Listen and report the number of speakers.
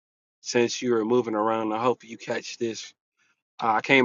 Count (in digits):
1